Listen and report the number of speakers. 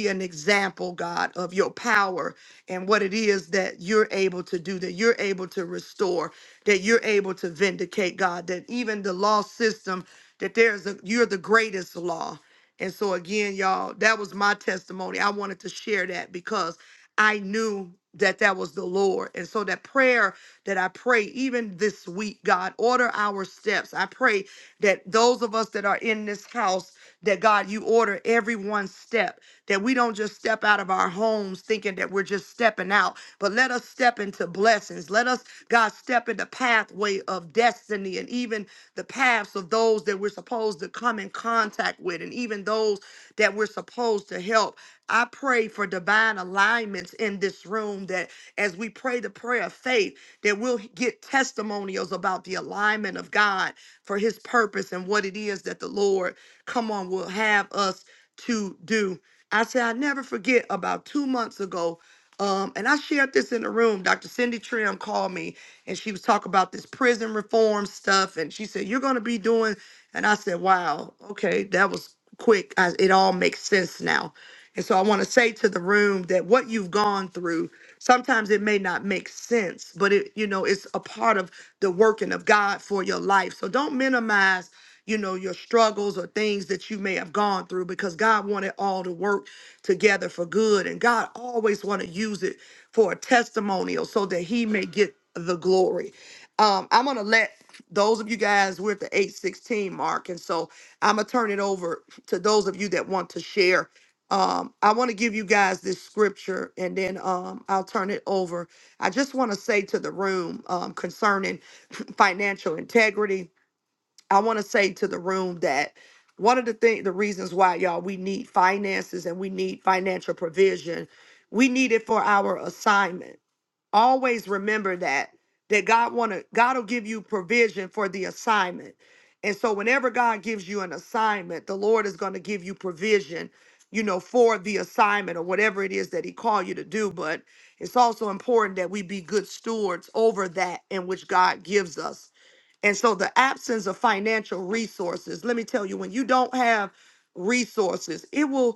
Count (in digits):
1